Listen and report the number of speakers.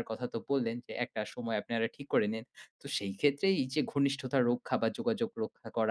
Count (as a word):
one